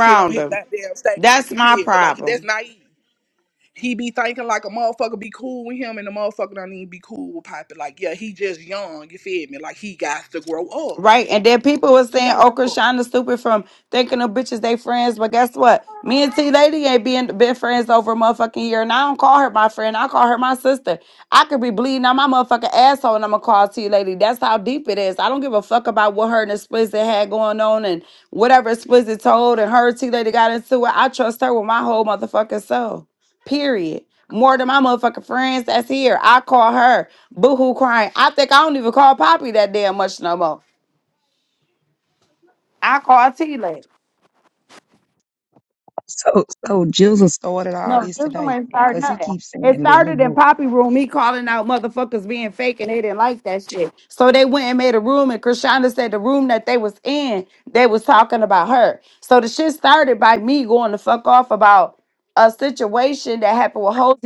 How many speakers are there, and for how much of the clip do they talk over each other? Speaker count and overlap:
three, about 7%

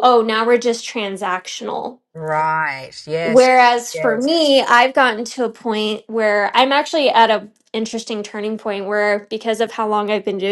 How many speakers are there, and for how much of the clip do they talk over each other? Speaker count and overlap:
two, about 5%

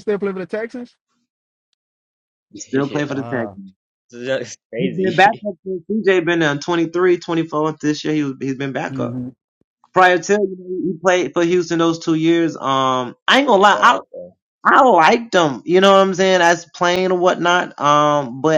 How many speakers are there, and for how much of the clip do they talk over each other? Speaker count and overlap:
three, about 10%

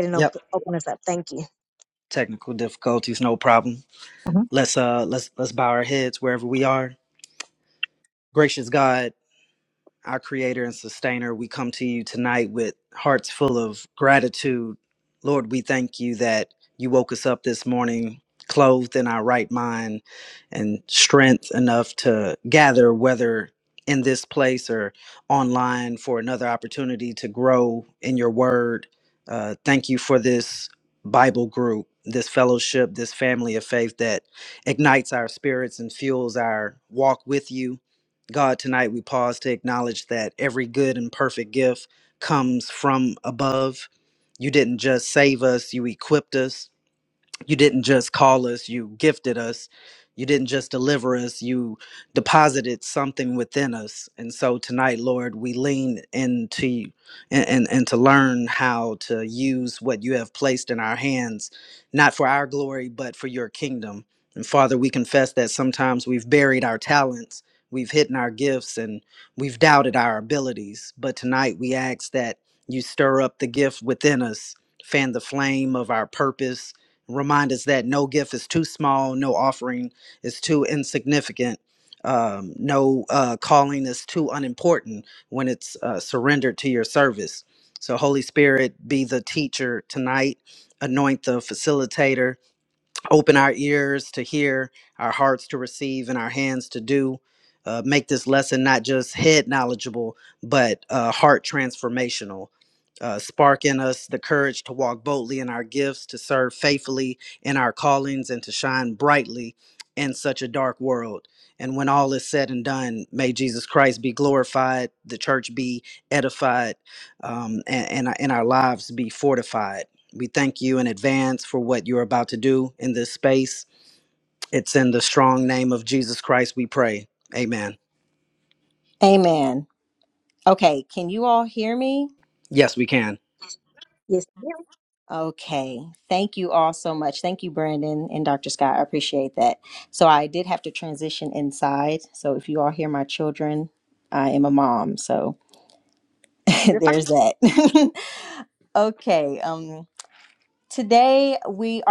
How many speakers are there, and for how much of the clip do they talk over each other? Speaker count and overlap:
three, under 1%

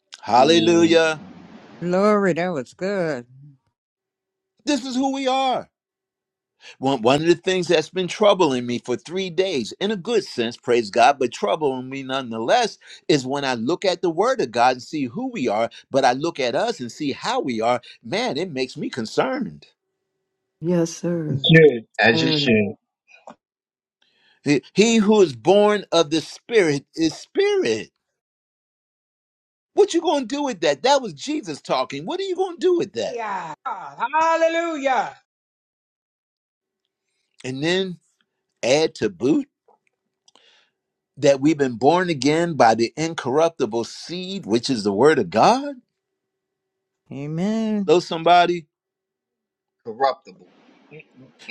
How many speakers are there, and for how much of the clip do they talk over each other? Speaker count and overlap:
five, about 2%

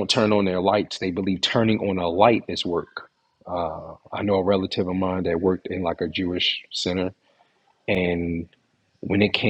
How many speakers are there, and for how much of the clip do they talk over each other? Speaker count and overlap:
one, no overlap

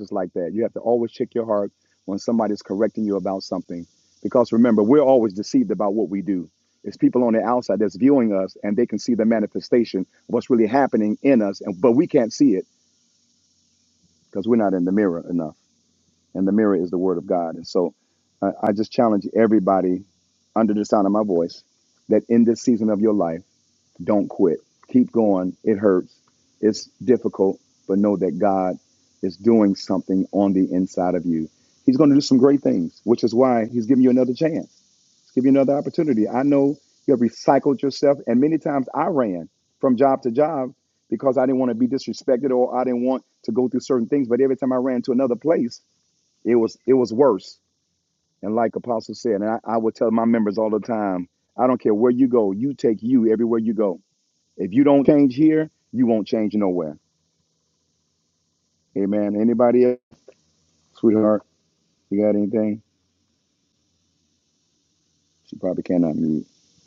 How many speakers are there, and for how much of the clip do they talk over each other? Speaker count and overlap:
one, no overlap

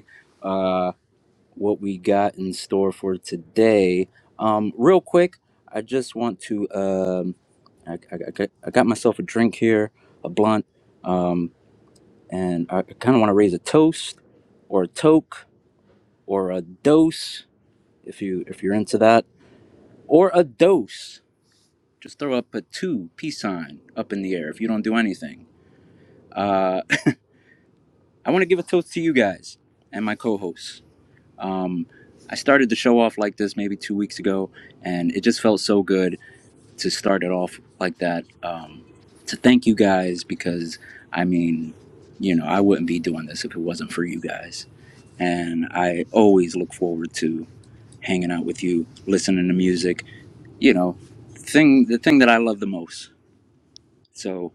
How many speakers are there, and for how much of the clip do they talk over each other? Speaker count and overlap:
one, no overlap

